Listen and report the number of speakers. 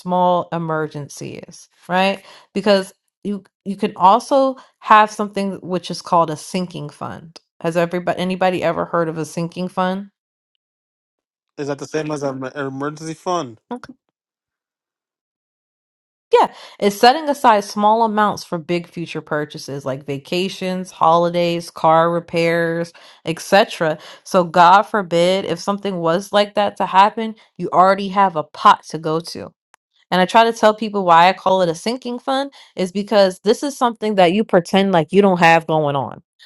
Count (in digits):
2